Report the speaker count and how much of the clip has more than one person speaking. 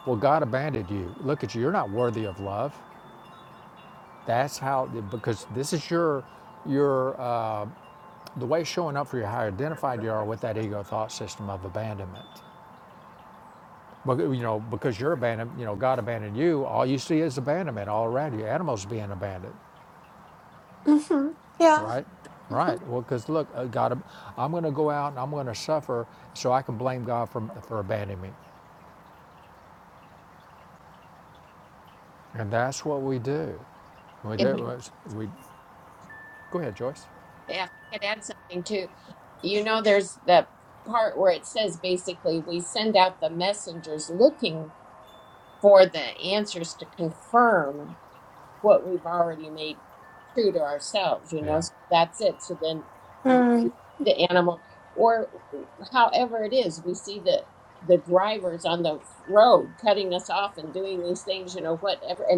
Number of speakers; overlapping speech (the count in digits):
3, about 2%